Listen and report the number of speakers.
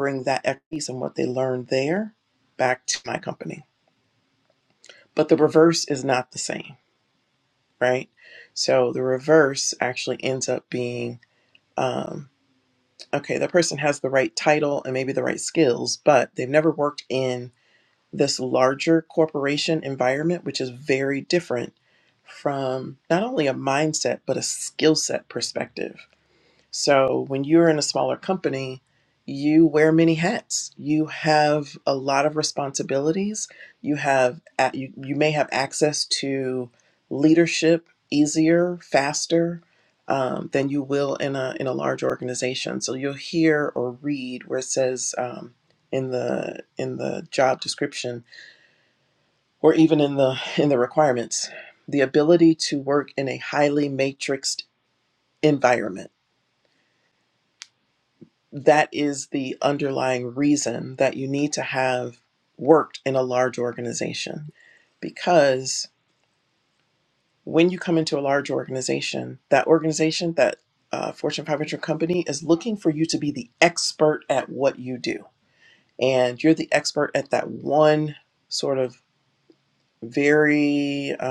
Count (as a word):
one